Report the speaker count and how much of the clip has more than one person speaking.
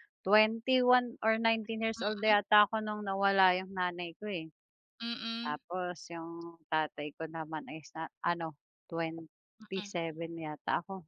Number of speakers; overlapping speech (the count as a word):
two, about 6%